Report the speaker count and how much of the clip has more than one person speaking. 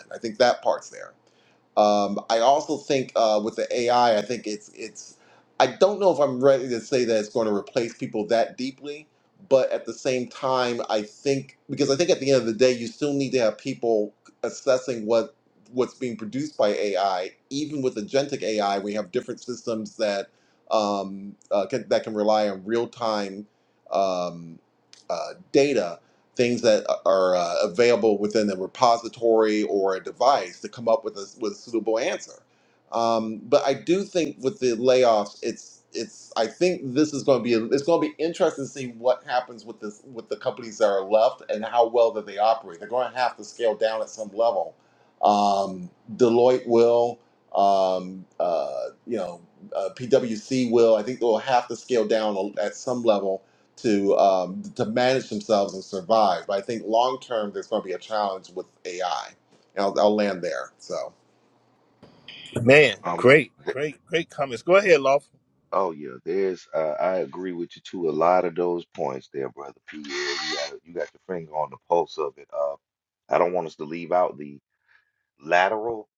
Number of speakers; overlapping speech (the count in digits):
3, under 1%